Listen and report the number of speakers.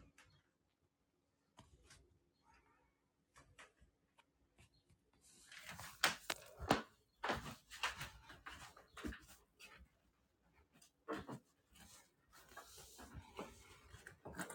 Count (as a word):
zero